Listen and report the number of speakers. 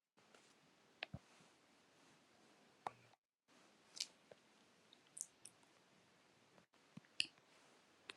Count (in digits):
0